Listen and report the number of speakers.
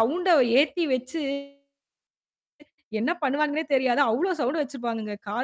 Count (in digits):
1